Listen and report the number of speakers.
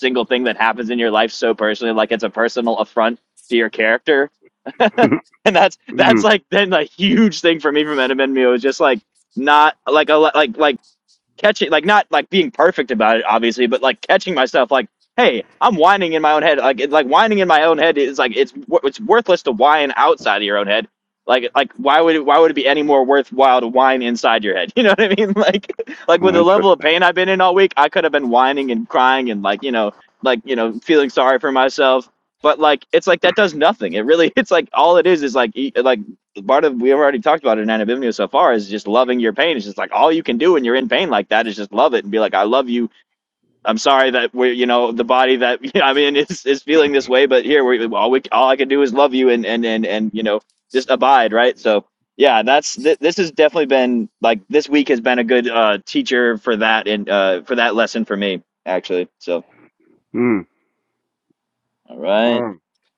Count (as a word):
two